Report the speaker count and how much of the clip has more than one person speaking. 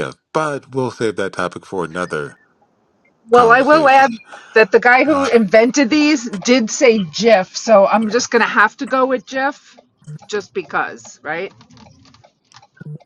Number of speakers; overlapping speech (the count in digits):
2, about 9%